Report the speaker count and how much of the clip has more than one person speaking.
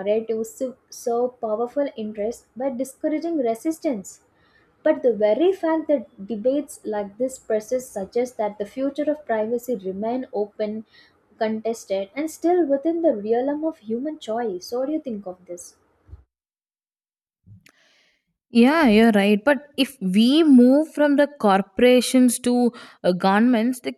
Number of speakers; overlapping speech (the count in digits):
2, no overlap